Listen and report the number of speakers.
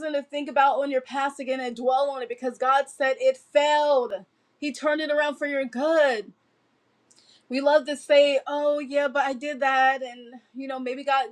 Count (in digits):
1